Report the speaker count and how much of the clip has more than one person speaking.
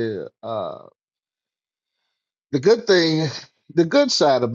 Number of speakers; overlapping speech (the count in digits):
1, no overlap